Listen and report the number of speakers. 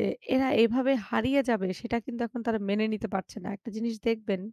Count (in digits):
1